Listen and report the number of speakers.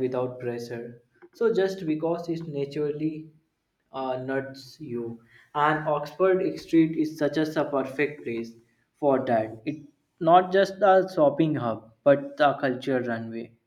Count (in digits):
1